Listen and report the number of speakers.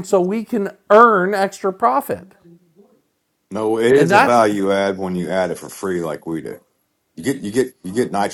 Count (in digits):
2